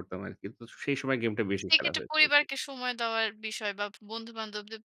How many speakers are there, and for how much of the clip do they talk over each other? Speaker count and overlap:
2, about 12%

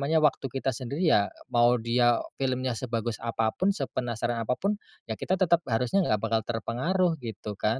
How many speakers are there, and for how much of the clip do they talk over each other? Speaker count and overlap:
1, no overlap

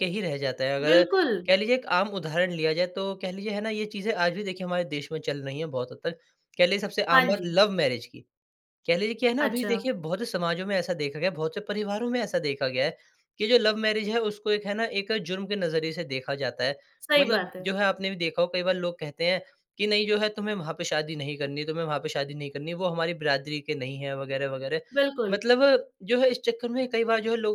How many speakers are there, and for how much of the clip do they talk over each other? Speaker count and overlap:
2, about 6%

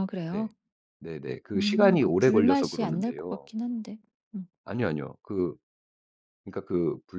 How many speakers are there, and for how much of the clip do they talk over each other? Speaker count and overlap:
2, about 29%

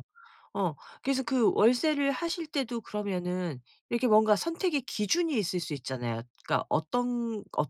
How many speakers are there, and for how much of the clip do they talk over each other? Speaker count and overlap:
1, no overlap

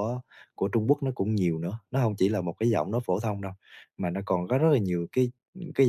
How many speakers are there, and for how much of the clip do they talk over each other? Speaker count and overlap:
1, no overlap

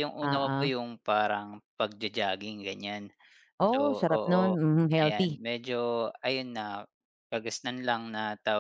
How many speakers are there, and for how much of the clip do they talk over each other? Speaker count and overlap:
2, about 19%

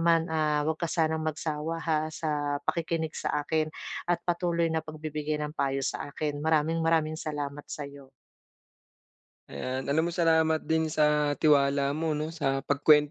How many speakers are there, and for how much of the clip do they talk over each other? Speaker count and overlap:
2, no overlap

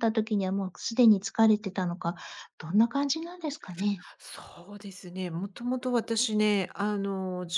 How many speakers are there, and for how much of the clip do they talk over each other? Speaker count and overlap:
2, no overlap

